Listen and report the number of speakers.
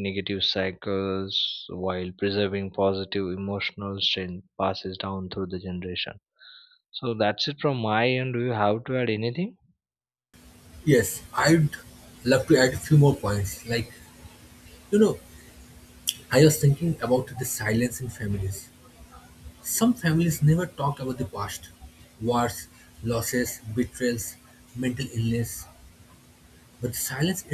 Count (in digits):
2